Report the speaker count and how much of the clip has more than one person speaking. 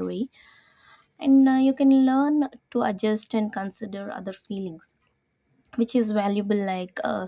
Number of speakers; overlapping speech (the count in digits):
1, no overlap